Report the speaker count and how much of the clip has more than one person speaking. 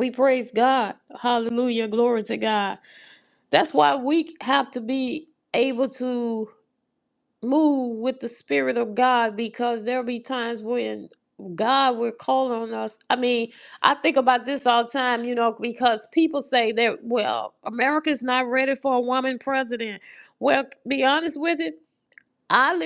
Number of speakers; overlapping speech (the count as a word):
one, no overlap